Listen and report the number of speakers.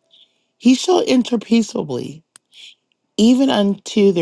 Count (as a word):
one